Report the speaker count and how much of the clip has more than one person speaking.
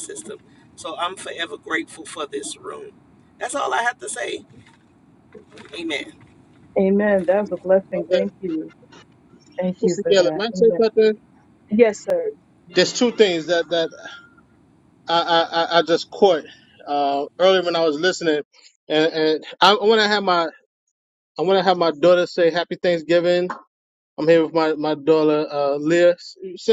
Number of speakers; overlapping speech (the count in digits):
3, about 4%